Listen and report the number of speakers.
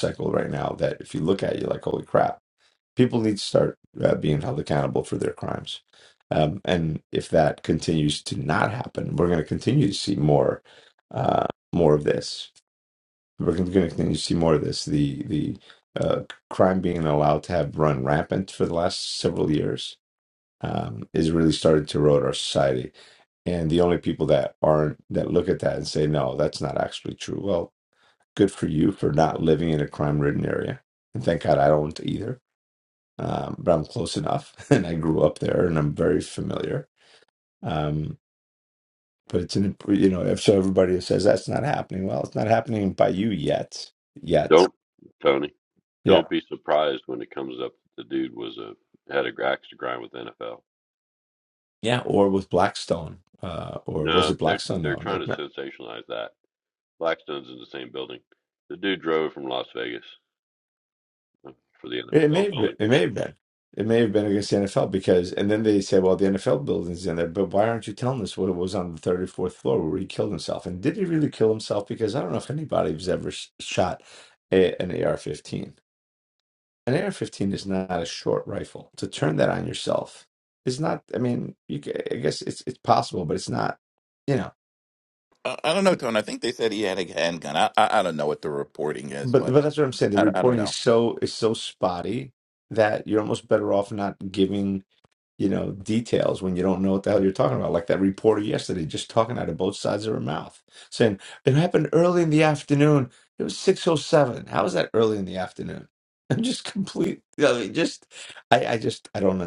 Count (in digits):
3